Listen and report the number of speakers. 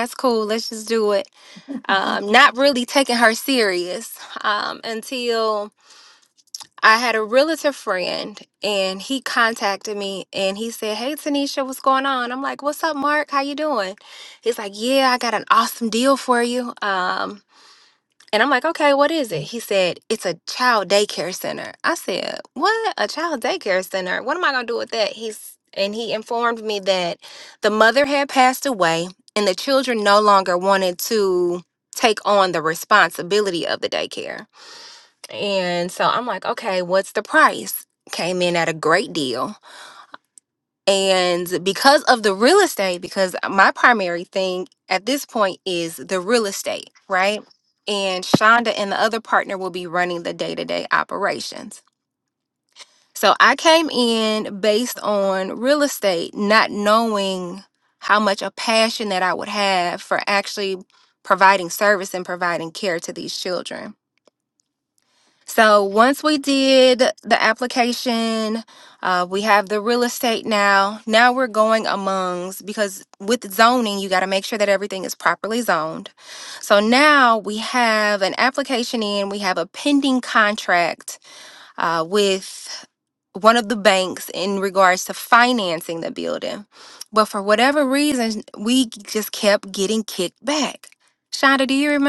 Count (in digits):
1